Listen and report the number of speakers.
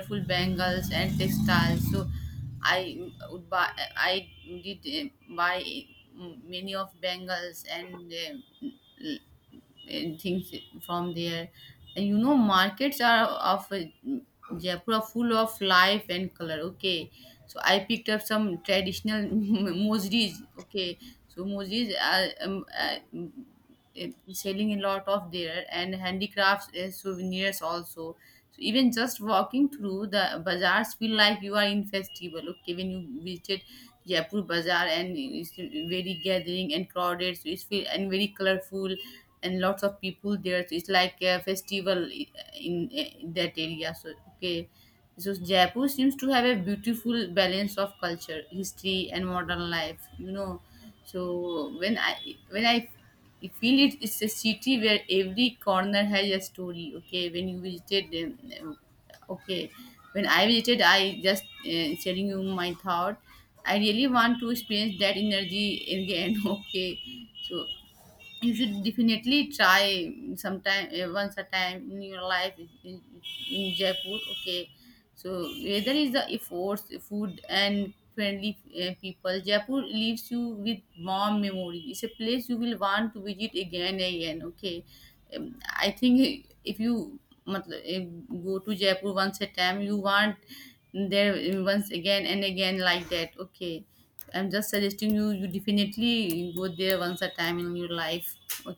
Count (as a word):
one